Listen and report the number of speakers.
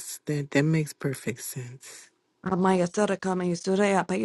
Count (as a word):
two